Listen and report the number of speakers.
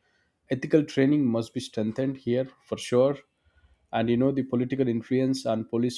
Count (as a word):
one